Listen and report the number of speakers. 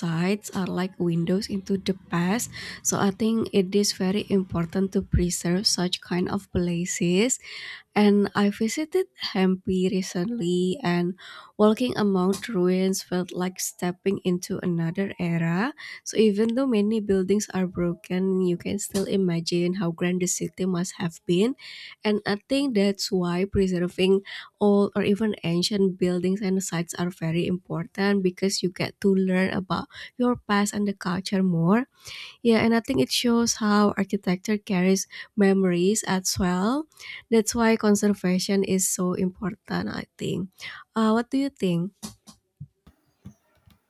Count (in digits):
1